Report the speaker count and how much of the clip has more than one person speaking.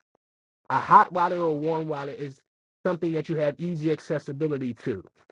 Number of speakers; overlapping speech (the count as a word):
one, no overlap